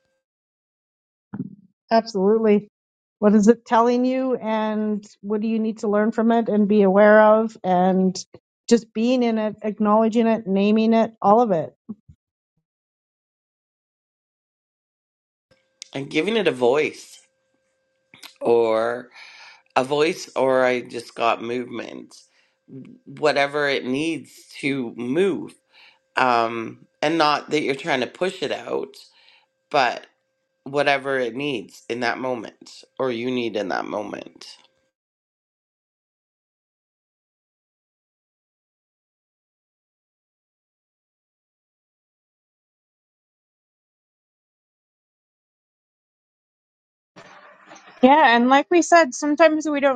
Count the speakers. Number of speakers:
3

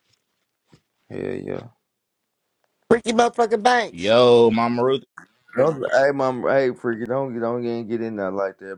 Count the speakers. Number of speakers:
3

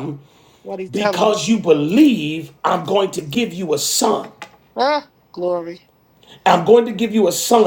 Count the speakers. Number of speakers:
2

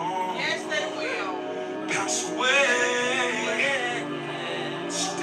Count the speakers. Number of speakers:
0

